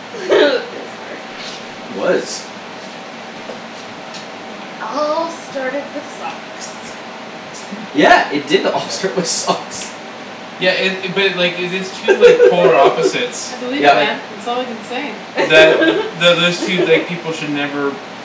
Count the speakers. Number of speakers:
4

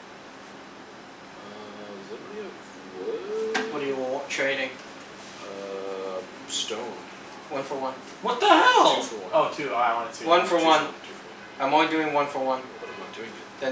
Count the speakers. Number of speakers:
3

